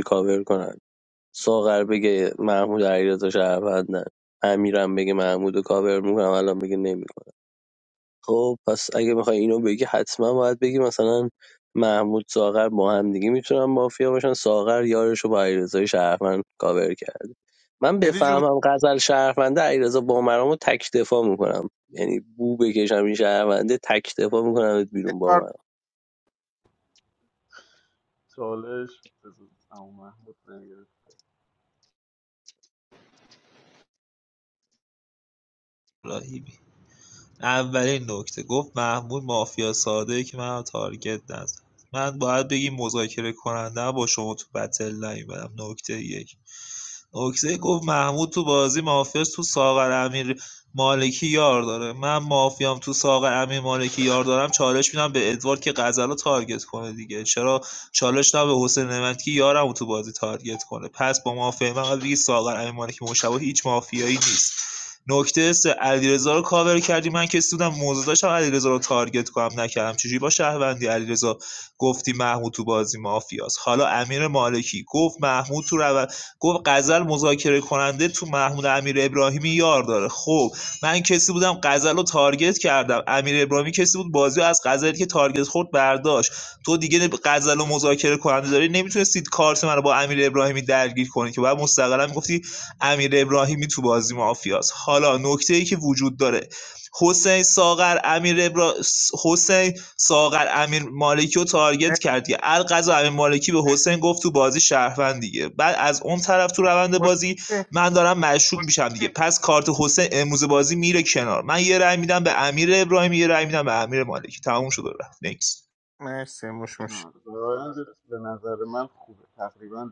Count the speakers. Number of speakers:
4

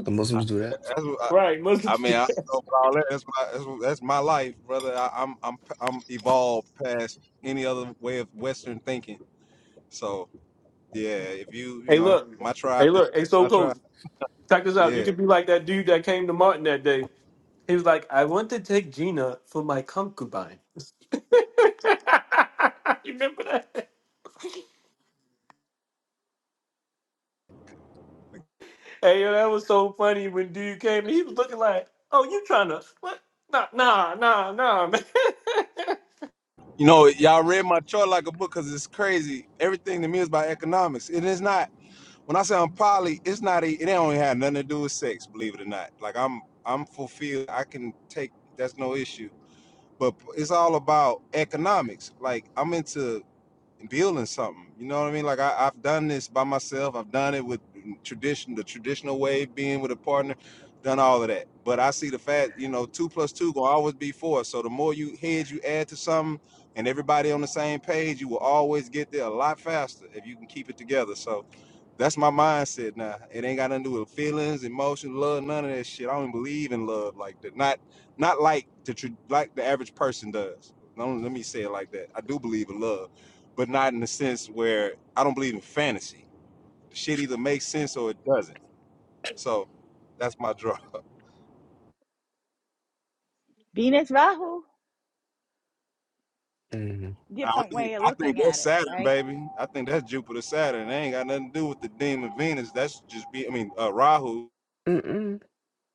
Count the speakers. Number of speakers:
4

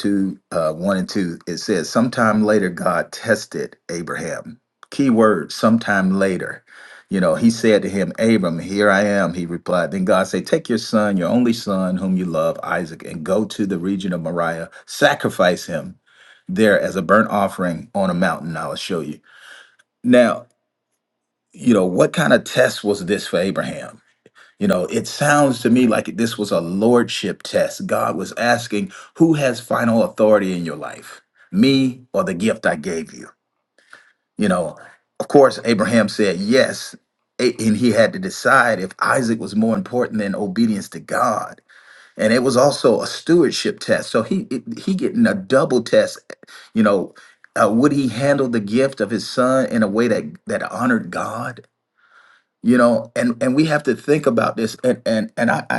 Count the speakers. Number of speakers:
1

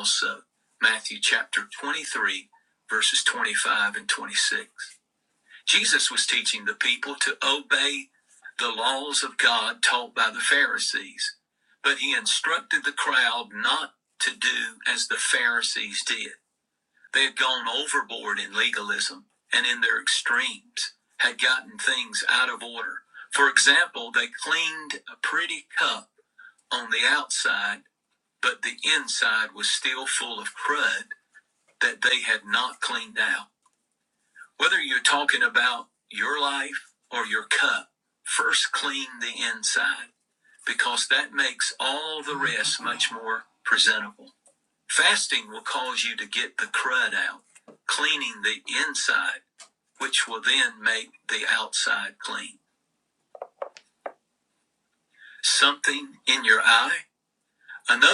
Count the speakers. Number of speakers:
1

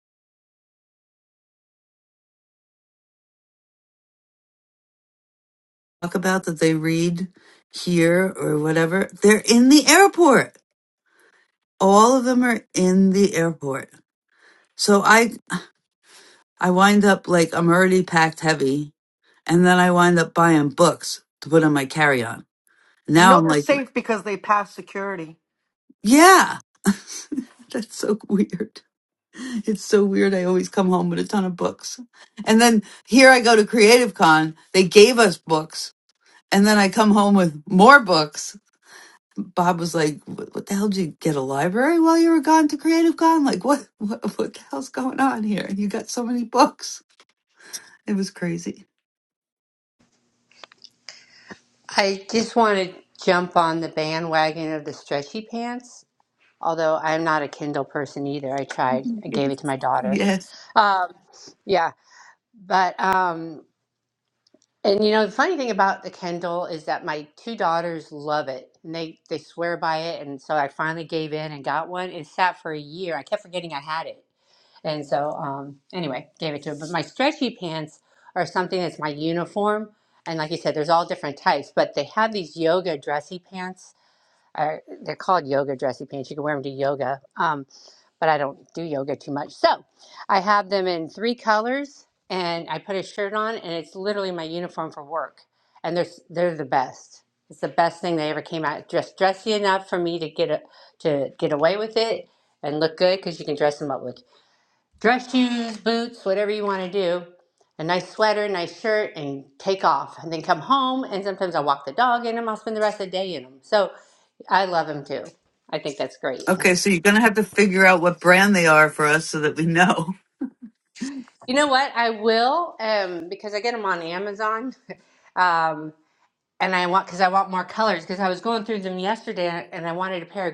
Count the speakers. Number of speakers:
3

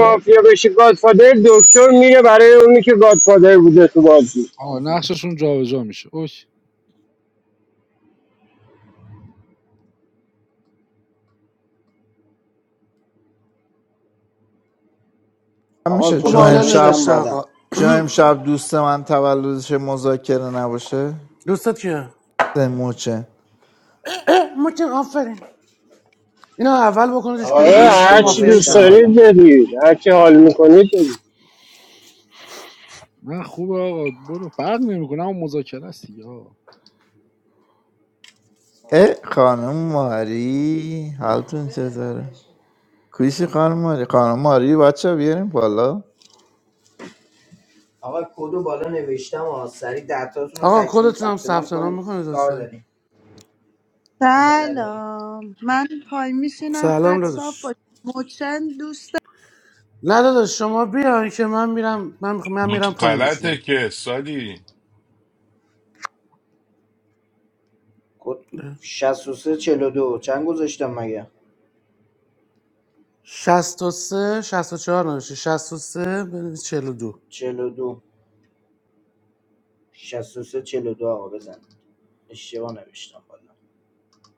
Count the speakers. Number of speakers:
7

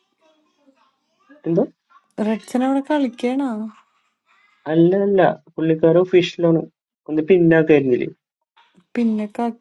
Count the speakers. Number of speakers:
2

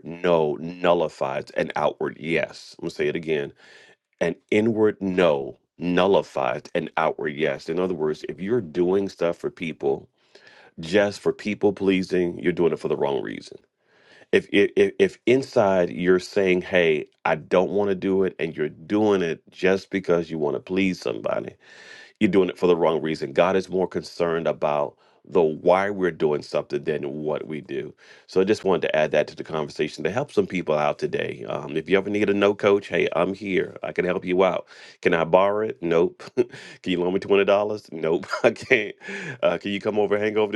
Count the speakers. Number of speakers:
1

